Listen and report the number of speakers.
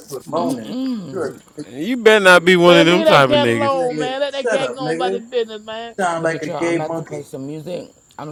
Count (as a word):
four